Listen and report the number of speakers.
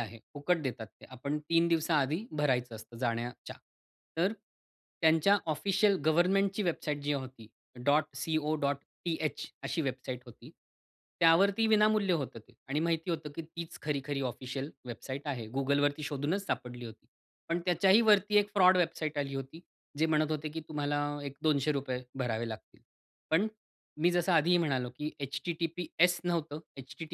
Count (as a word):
one